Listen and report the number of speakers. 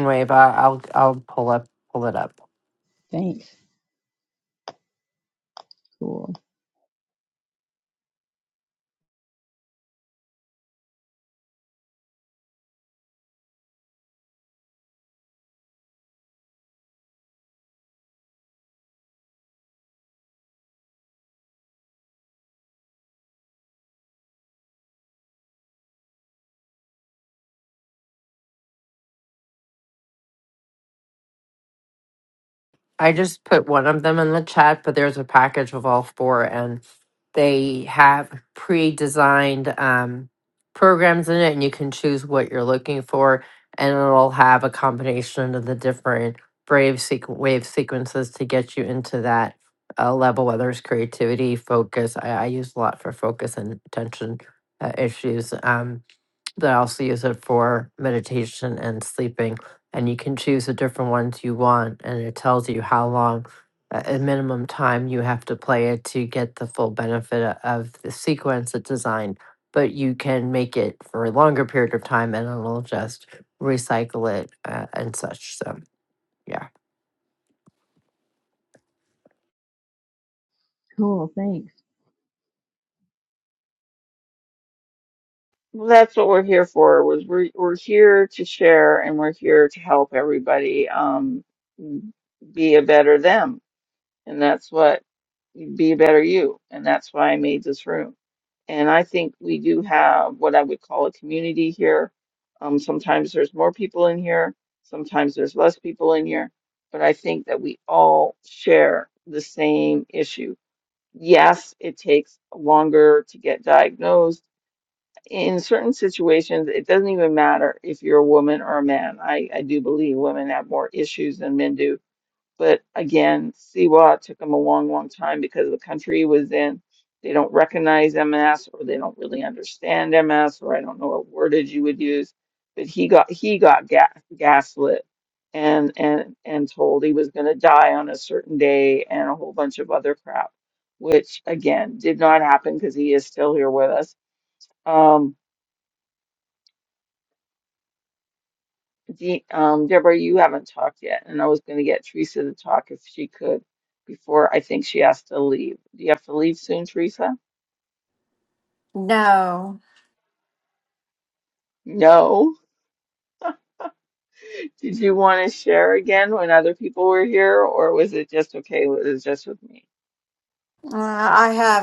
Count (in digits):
4